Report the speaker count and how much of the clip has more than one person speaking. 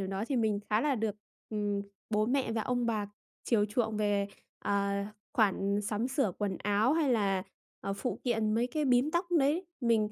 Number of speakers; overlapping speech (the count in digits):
1, no overlap